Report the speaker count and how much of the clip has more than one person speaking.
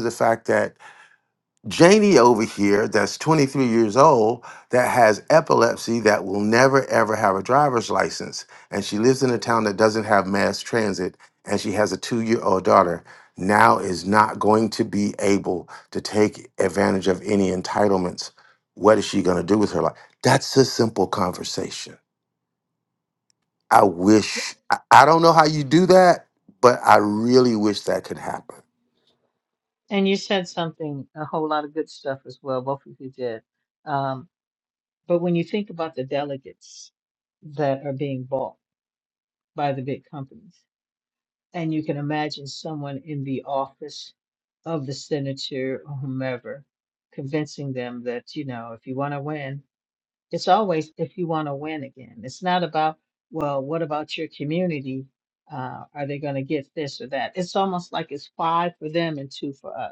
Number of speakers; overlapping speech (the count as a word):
two, no overlap